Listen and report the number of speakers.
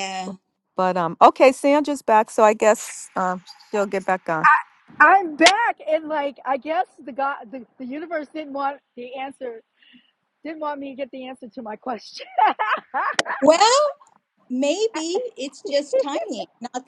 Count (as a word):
three